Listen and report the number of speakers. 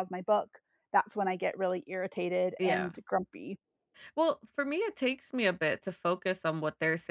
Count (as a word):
two